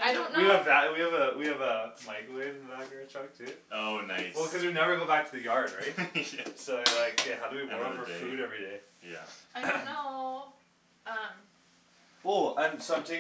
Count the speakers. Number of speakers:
3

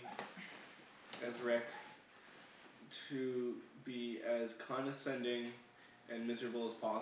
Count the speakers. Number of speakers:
1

